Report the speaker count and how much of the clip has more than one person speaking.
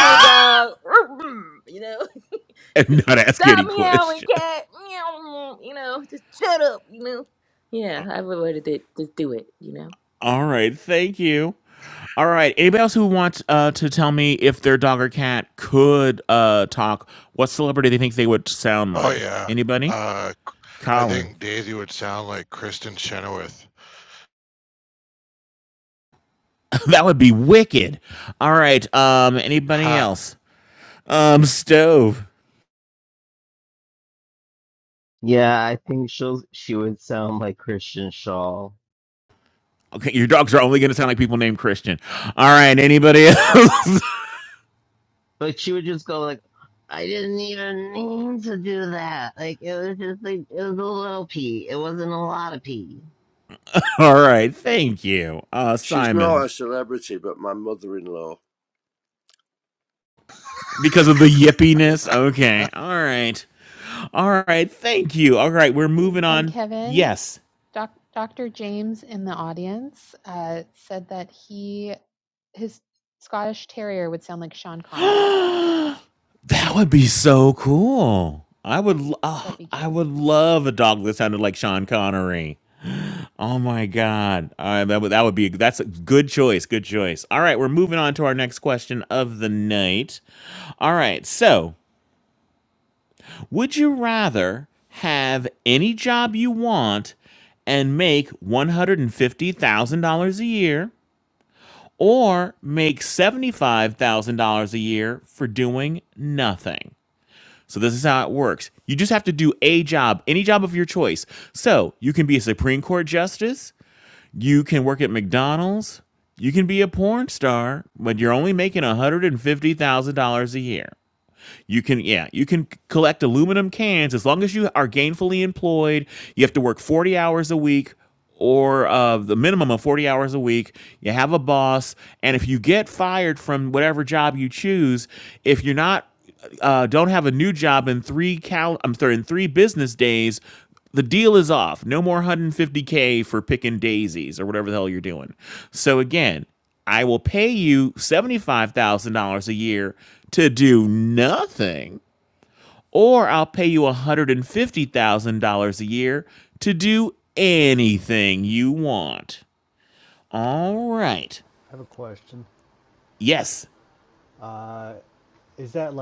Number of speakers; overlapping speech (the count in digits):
7, about 2%